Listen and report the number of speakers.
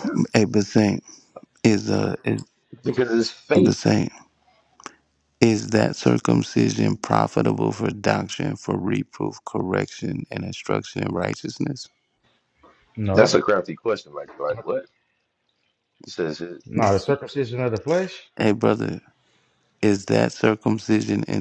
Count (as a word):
three